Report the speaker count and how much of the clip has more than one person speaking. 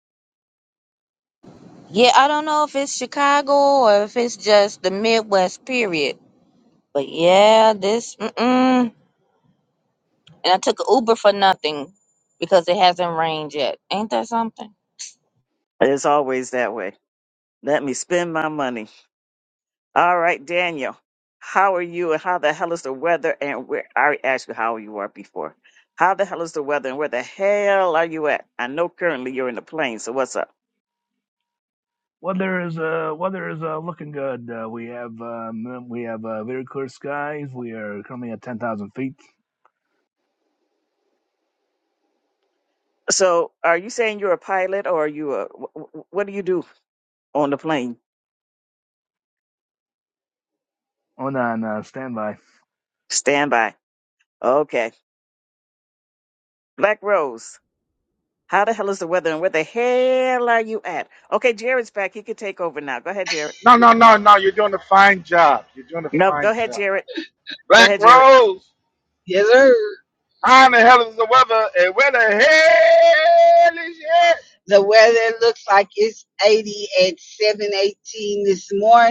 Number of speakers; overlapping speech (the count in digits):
5, about 1%